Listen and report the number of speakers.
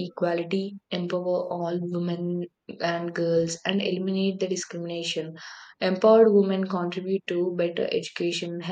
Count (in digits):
1